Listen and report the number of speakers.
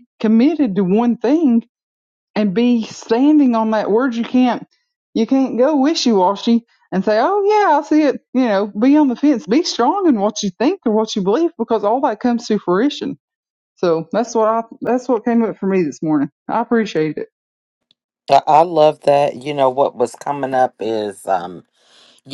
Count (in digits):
2